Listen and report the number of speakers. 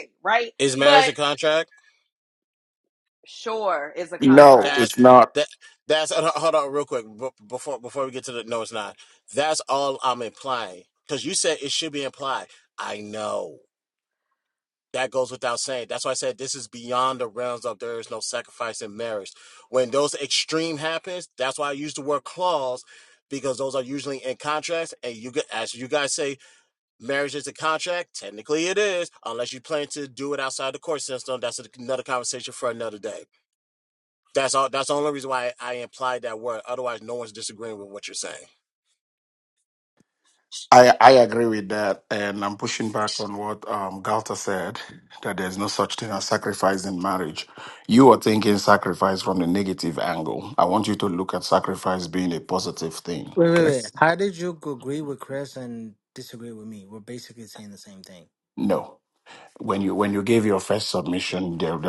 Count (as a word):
four